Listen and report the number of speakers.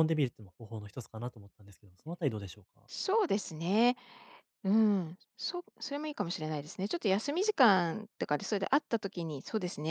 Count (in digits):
2